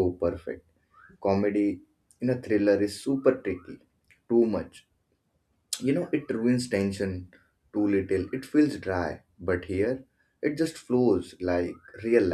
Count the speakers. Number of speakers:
one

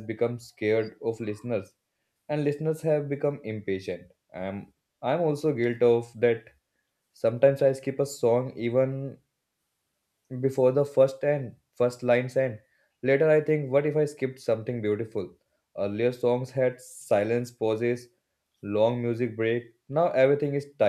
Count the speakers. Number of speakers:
one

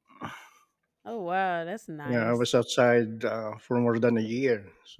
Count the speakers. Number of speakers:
two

